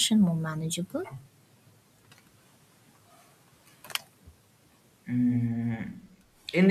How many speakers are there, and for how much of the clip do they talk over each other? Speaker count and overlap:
2, no overlap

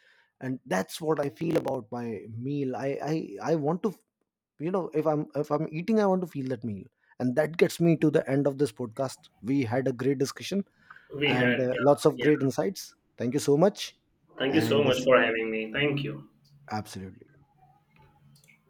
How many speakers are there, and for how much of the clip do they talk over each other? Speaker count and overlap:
2, about 7%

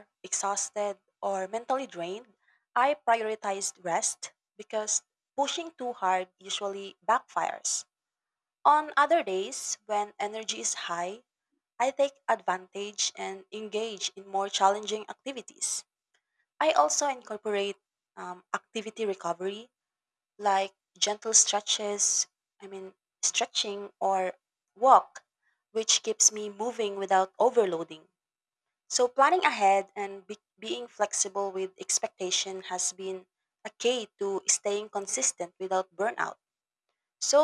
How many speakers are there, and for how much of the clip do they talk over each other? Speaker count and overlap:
1, no overlap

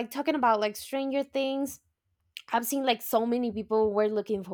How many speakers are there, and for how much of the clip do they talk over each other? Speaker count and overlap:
1, no overlap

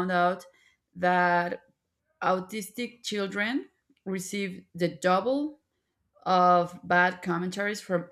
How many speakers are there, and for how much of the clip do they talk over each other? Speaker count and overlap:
1, no overlap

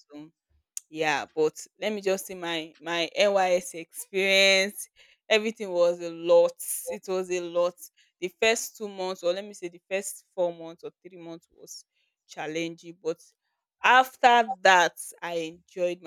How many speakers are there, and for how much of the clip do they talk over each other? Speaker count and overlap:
1, no overlap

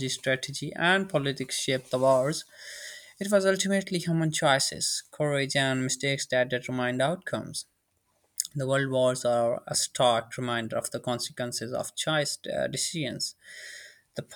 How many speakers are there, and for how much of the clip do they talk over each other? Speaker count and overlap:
1, no overlap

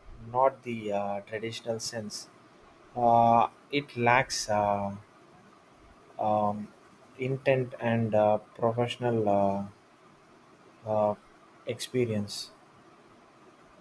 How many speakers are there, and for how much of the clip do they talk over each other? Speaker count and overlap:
1, no overlap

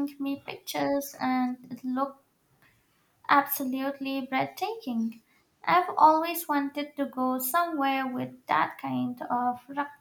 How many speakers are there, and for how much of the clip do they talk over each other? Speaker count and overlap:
1, no overlap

